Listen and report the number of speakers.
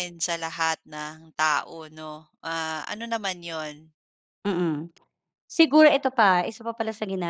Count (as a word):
two